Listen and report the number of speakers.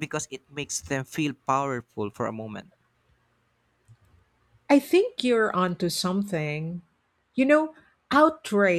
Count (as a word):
two